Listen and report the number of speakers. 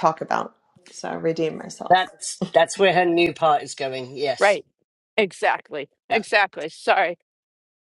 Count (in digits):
3